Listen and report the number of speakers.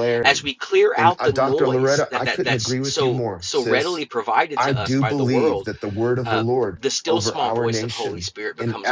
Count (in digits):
2